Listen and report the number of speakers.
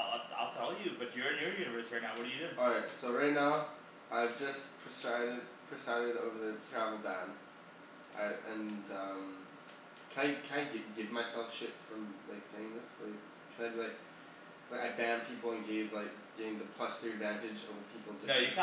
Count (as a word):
two